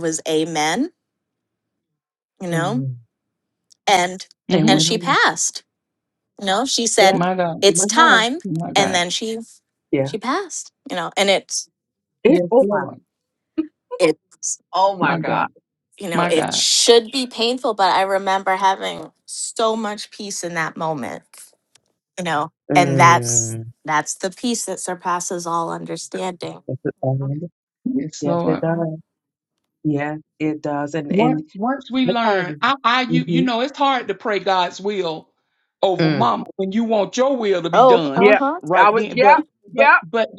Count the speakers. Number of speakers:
3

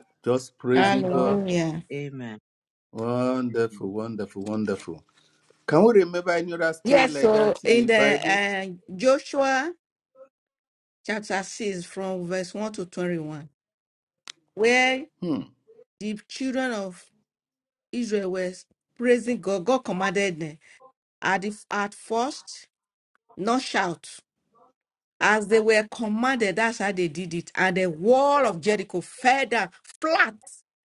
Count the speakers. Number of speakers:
3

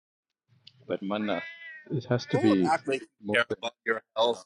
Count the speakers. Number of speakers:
2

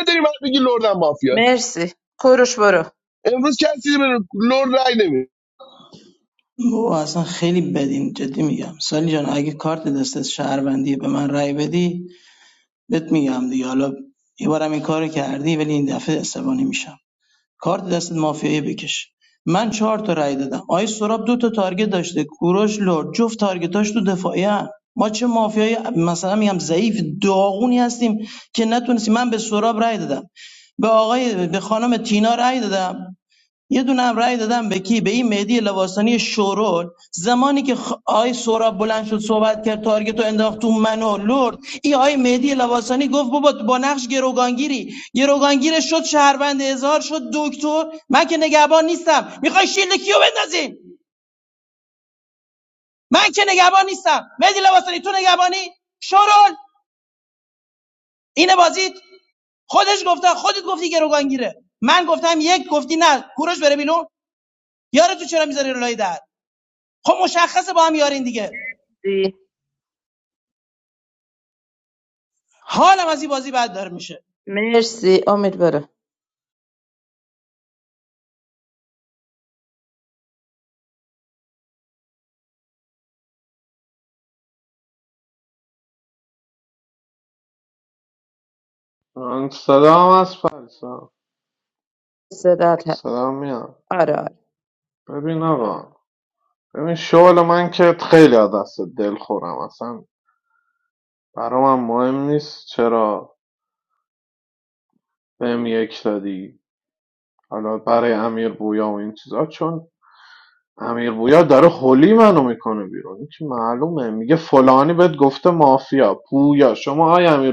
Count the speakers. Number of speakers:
4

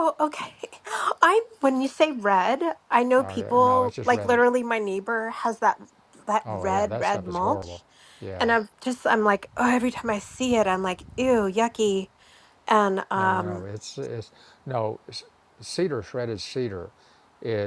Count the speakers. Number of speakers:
2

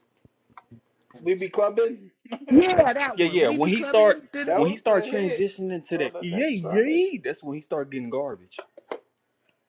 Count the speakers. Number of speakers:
3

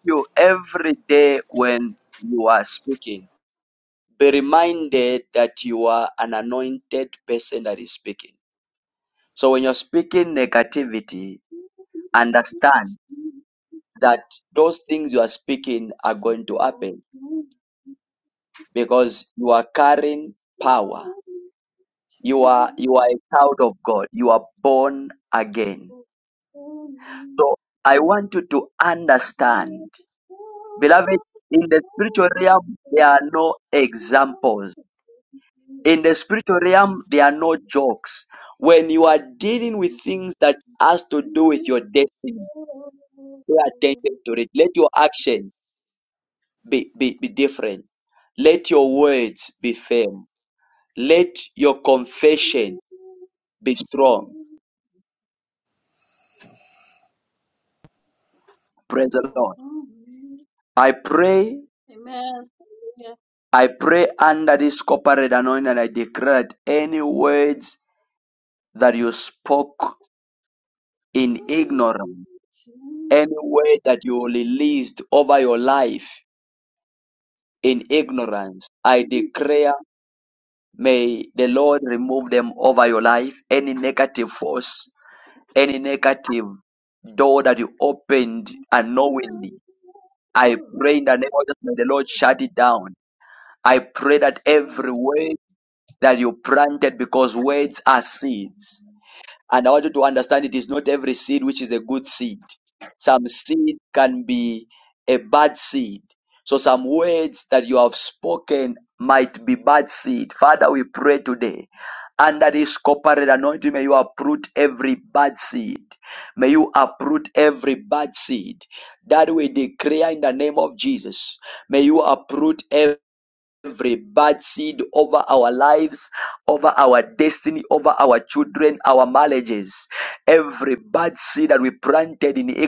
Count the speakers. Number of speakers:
2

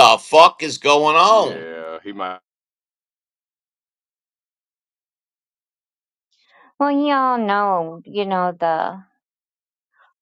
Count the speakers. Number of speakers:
3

